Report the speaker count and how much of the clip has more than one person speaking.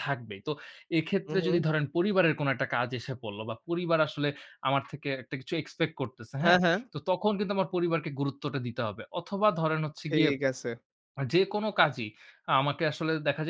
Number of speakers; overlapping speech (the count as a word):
two, about 6%